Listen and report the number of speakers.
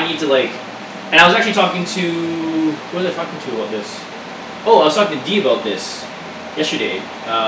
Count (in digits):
1